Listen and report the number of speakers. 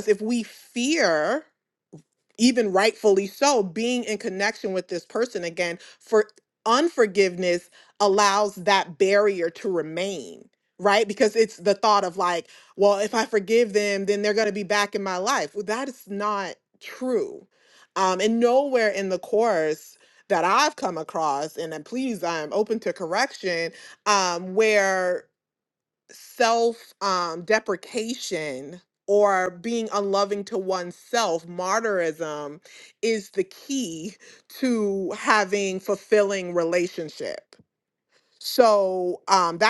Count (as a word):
one